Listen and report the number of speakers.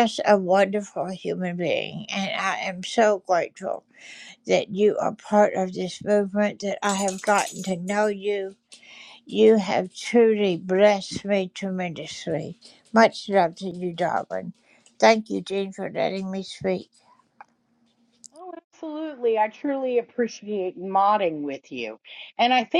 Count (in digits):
2